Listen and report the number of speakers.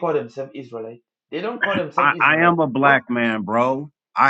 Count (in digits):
2